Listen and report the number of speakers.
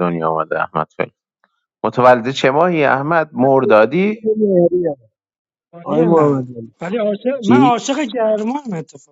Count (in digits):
3